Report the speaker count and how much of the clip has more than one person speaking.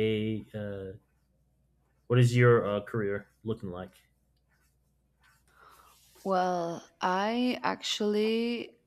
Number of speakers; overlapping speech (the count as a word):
two, no overlap